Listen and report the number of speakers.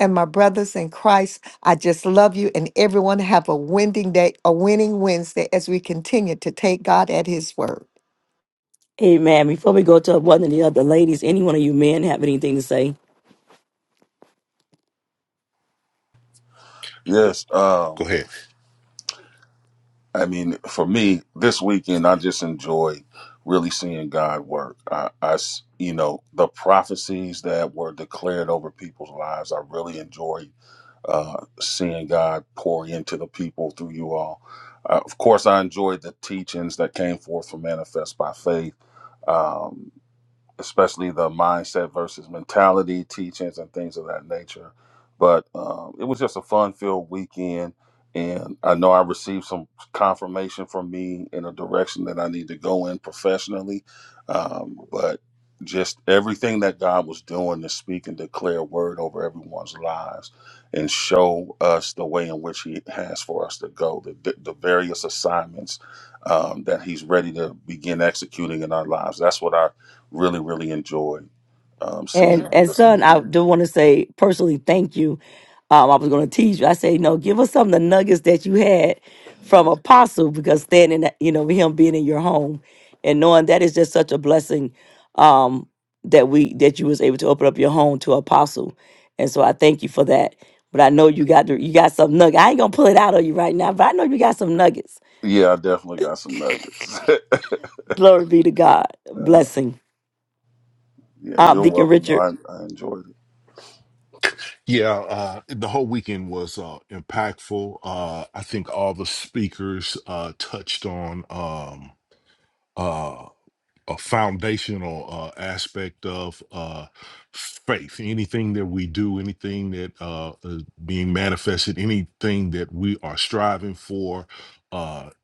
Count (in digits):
4